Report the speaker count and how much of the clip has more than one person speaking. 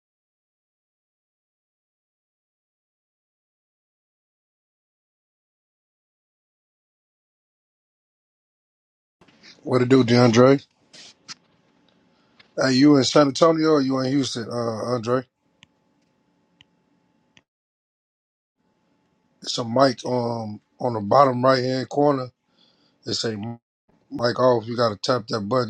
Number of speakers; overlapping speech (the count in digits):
1, no overlap